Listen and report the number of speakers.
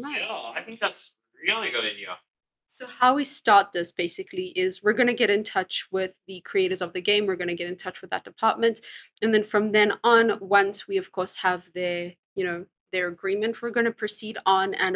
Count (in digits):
2